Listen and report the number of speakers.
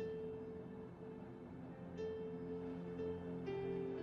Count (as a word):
zero